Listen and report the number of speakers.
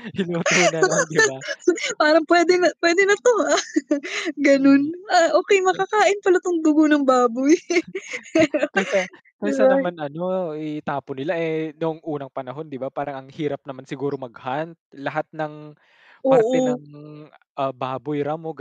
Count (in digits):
2